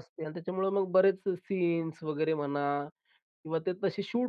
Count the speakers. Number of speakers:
1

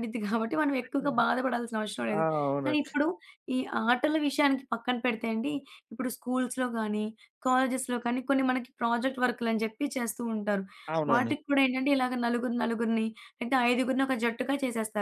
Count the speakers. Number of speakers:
2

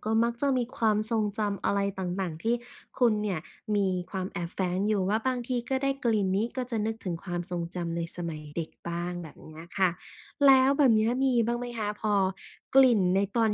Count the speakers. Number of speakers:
1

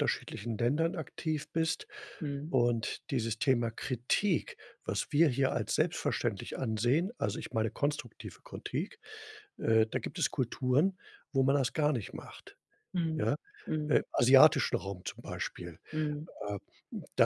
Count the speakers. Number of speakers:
2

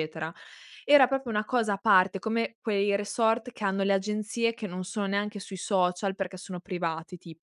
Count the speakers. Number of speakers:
1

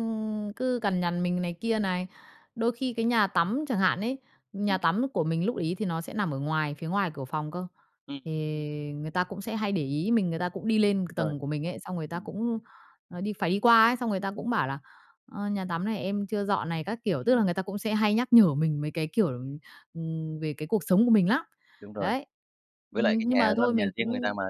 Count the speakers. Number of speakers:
2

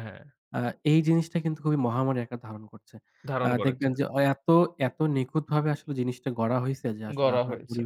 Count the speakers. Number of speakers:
2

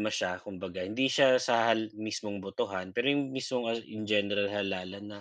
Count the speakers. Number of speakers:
1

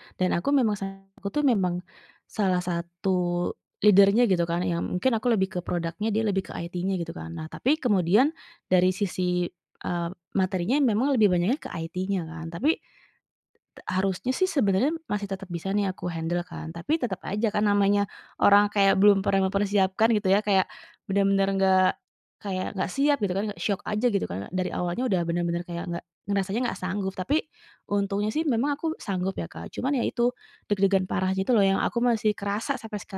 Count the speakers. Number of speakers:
1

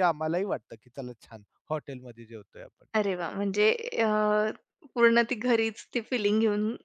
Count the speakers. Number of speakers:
2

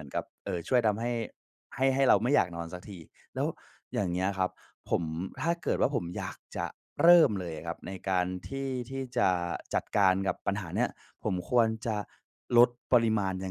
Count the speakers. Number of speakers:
1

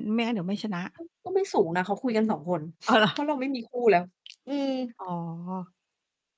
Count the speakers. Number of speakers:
2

